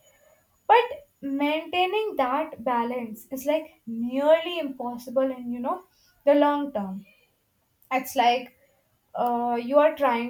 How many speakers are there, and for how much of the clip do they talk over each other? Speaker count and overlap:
one, no overlap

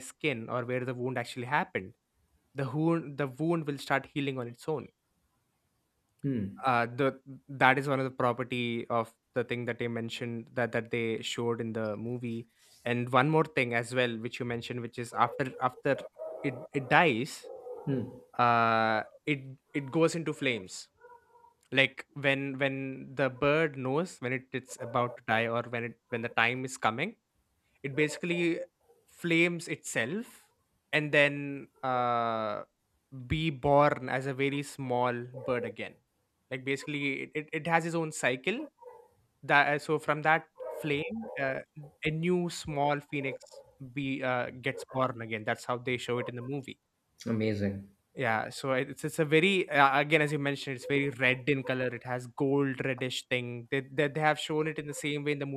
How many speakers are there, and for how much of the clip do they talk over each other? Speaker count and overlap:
two, no overlap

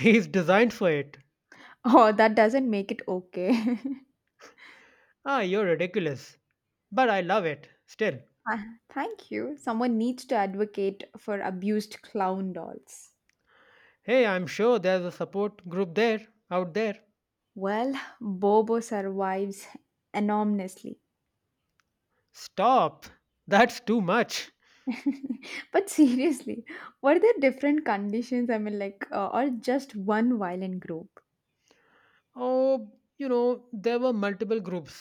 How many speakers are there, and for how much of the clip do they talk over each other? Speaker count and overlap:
two, no overlap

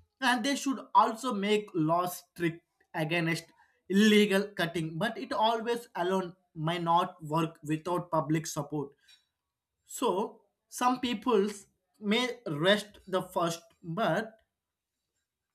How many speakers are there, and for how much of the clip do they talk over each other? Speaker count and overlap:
one, no overlap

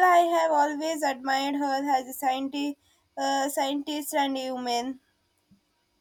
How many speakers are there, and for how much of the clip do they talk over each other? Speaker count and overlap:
one, no overlap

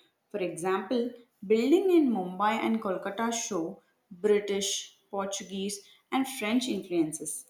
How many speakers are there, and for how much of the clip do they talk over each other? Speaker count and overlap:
one, no overlap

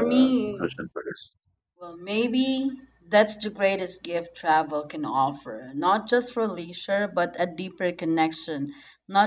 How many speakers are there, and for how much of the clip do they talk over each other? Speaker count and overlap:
two, about 7%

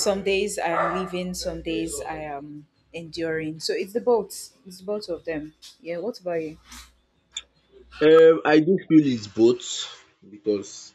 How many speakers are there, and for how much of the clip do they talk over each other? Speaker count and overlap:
two, no overlap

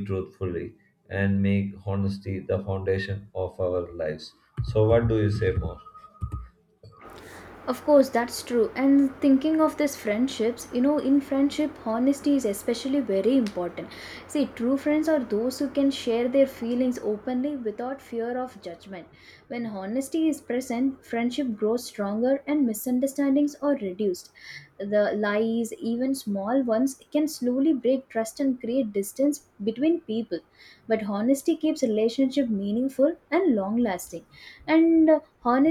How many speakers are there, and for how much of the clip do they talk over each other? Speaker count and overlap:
two, no overlap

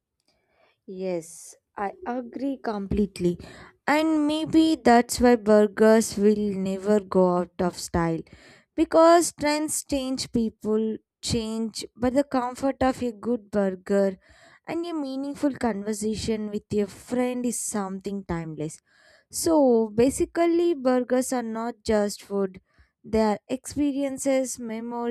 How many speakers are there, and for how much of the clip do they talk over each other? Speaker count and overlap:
one, no overlap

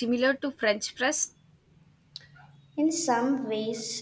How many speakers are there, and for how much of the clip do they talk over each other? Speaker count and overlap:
two, no overlap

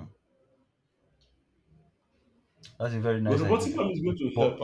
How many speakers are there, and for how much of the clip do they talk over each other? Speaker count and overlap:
two, about 15%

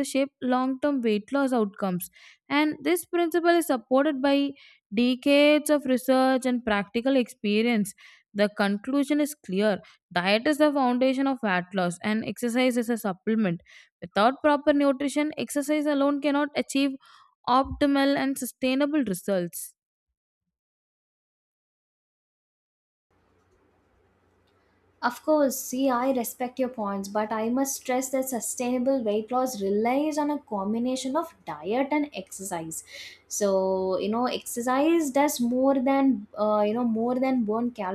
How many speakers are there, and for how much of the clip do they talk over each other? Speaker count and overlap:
two, no overlap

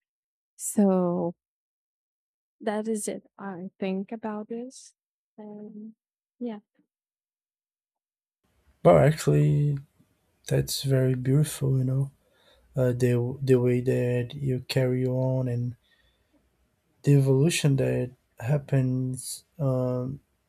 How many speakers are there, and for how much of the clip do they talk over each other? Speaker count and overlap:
two, no overlap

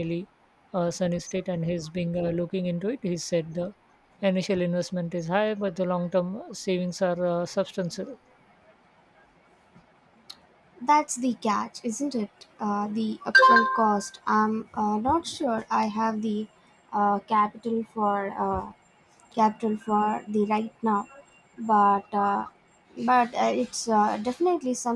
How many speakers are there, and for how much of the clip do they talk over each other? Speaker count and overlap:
two, no overlap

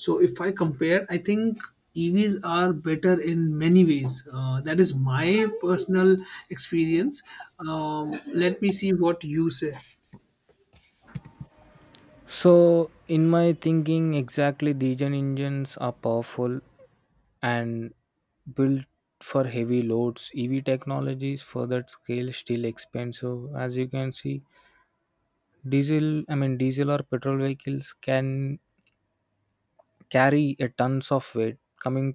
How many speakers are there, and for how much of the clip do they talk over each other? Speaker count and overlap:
two, no overlap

